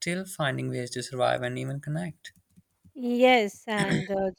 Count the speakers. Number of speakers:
2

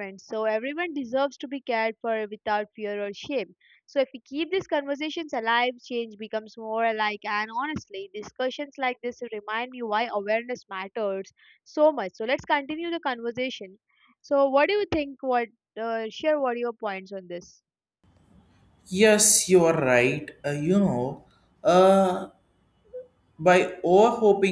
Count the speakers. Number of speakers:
2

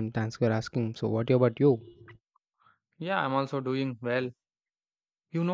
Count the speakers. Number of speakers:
2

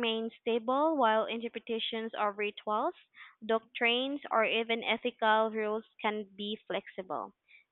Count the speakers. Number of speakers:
1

